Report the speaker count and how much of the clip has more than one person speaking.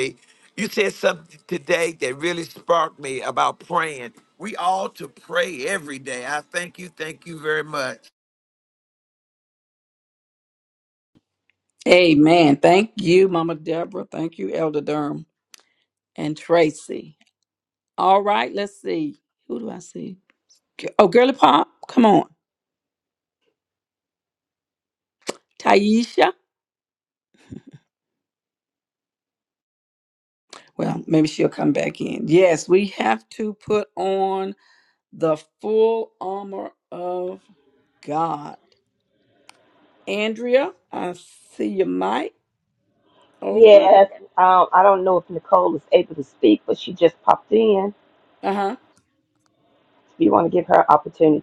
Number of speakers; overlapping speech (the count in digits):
3, about 1%